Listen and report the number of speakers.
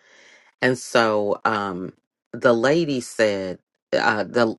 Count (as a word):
one